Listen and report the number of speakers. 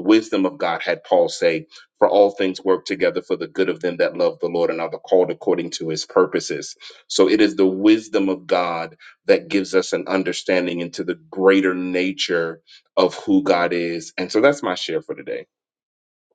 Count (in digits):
1